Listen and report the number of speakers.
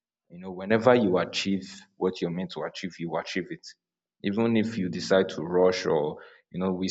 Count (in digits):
1